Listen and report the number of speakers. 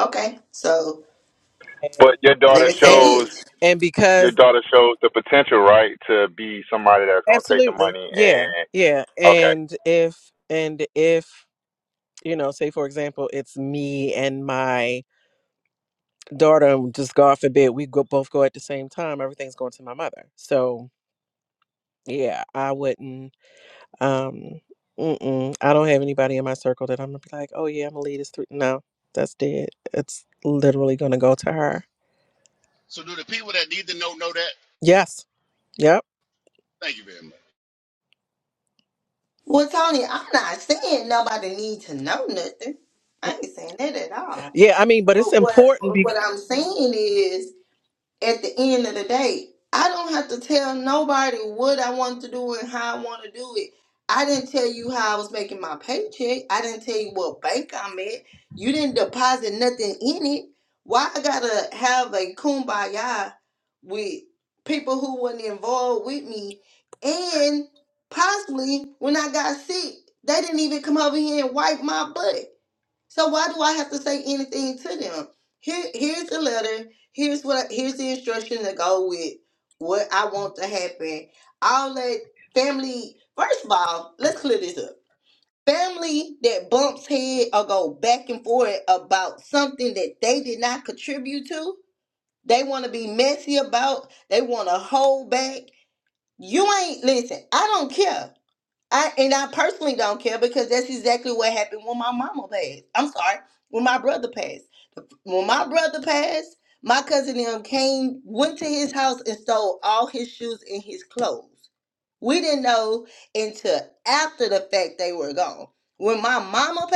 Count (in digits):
4